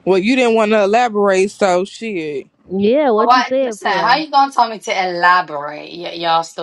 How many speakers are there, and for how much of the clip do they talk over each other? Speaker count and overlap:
three, about 15%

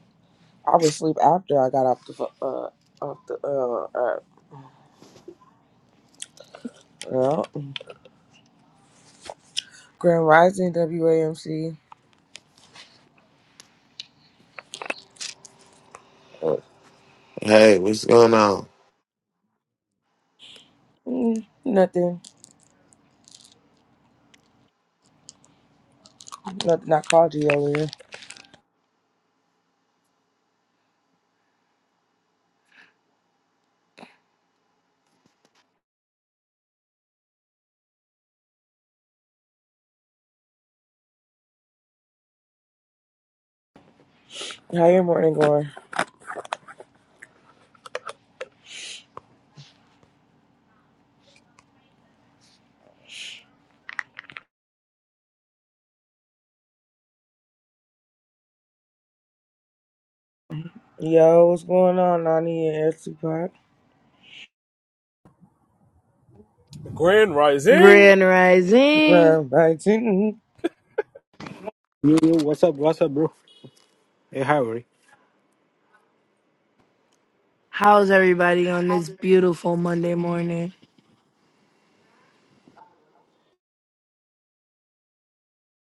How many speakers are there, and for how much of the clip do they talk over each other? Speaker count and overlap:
five, about 1%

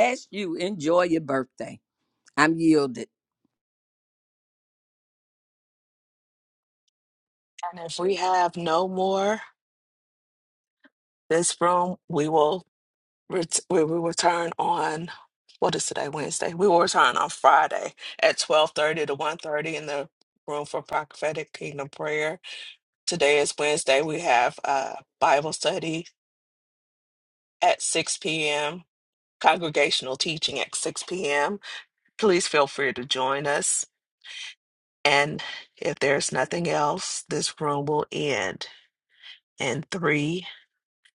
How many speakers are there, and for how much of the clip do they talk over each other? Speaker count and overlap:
two, no overlap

